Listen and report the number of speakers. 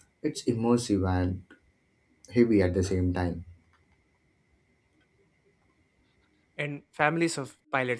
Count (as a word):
two